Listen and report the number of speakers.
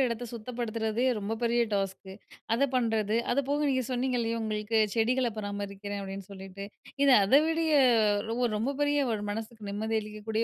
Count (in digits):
1